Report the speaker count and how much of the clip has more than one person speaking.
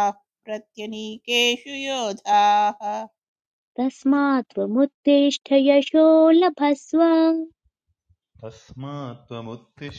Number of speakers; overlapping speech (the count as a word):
three, no overlap